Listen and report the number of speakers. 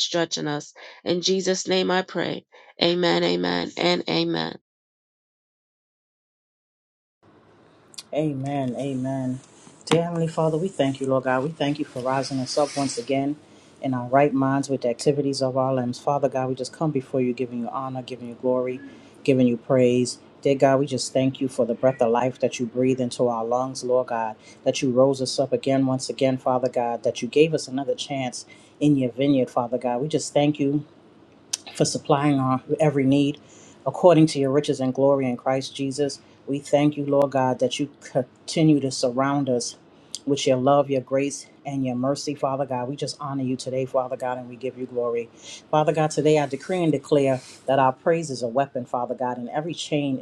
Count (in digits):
2